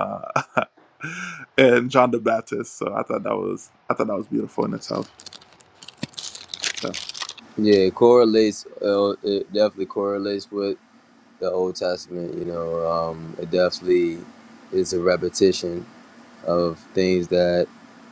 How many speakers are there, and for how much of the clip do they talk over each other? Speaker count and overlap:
two, no overlap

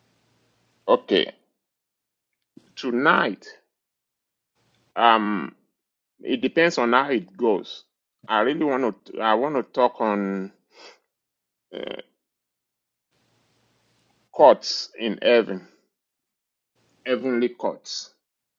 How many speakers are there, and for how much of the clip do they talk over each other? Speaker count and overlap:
one, no overlap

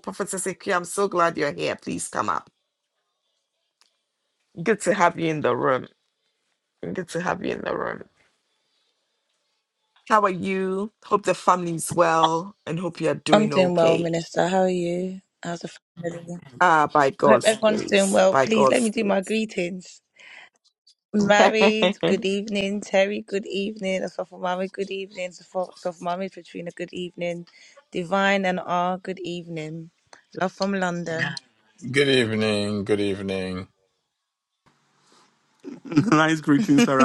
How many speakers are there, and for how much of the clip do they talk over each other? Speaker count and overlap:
four, about 7%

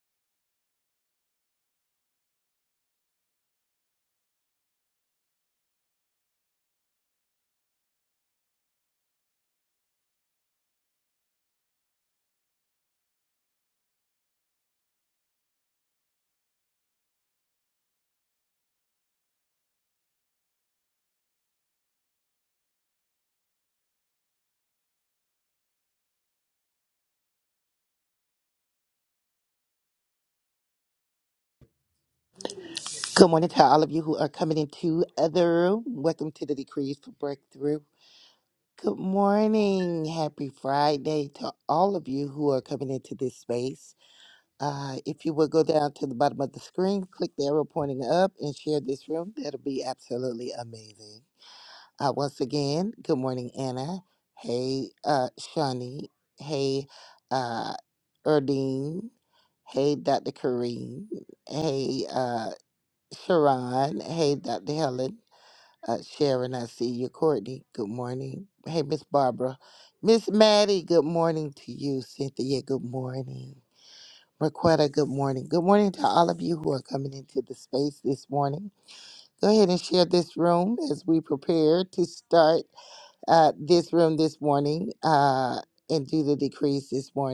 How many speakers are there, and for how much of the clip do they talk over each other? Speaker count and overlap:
one, no overlap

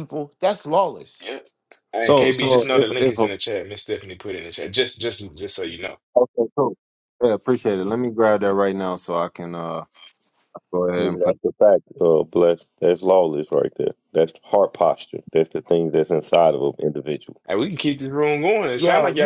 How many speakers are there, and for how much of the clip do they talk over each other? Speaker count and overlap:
four, about 11%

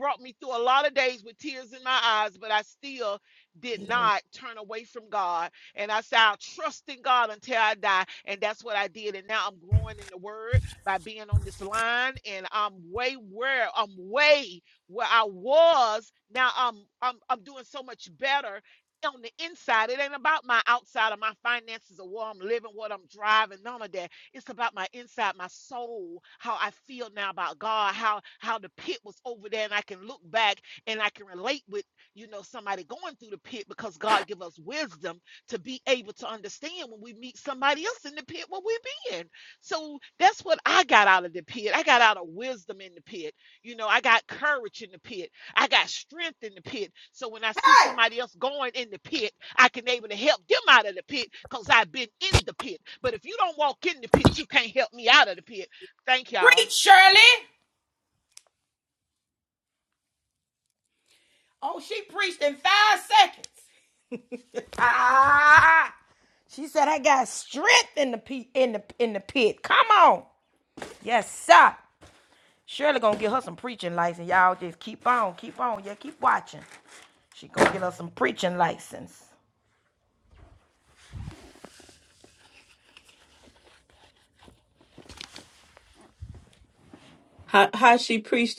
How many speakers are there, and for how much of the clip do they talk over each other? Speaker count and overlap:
three, about 1%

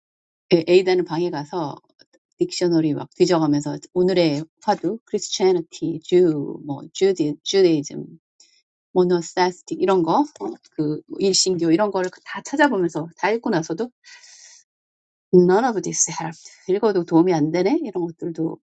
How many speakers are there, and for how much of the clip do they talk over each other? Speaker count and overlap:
one, no overlap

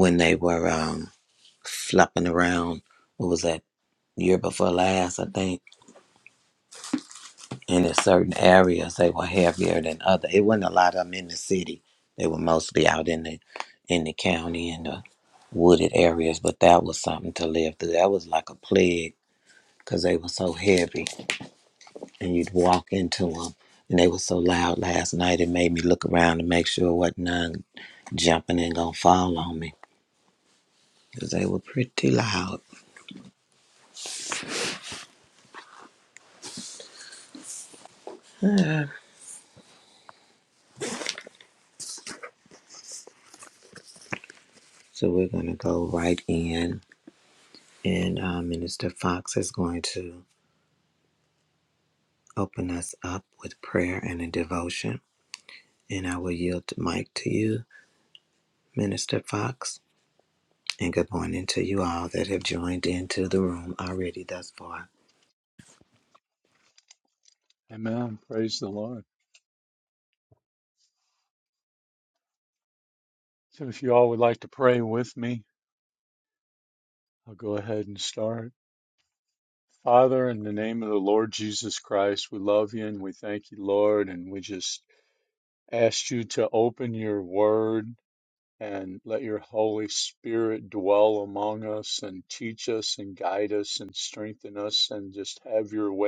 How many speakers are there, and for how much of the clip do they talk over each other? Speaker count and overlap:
two, no overlap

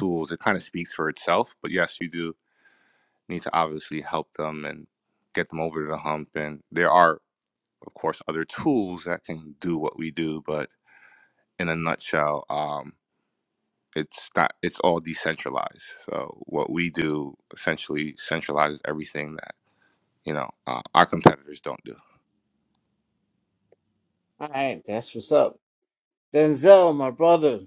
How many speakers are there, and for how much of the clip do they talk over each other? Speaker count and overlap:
two, no overlap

